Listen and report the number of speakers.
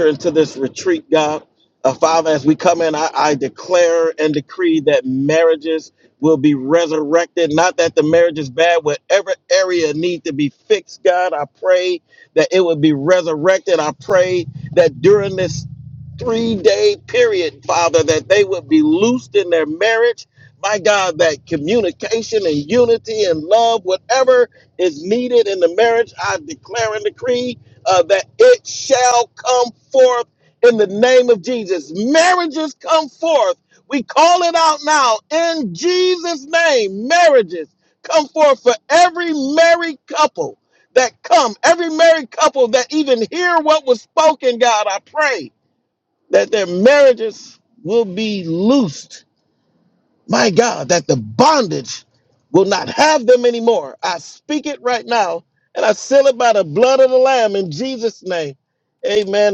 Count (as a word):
one